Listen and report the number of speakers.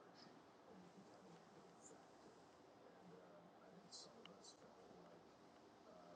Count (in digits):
0